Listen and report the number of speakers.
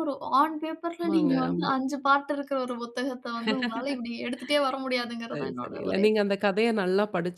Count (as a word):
two